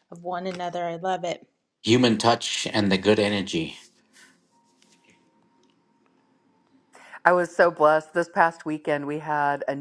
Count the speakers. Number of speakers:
three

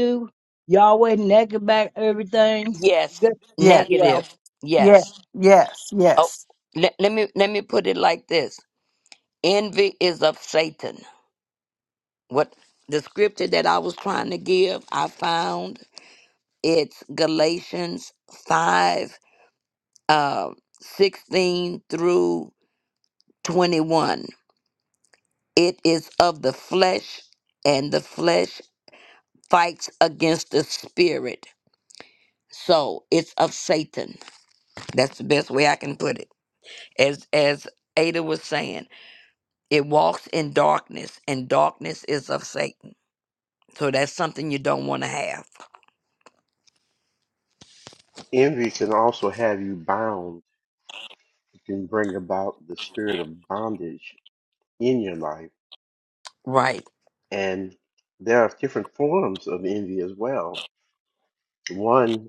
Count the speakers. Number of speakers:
four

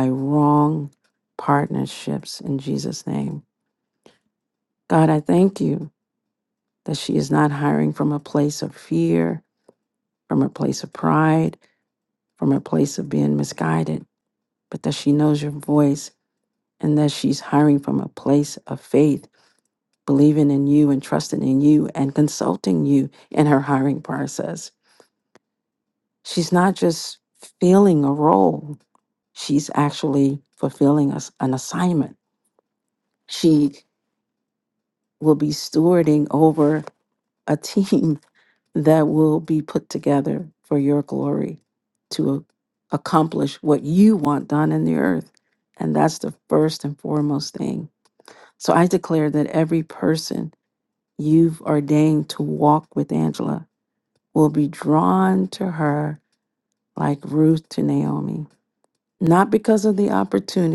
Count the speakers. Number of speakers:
one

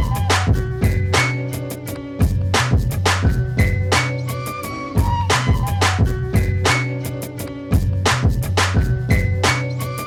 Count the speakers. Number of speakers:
zero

